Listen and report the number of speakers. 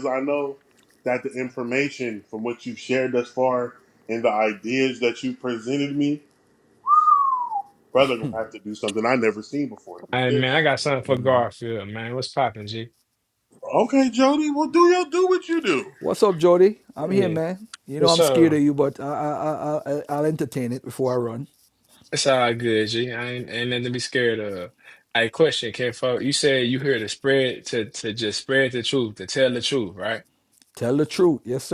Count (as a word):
three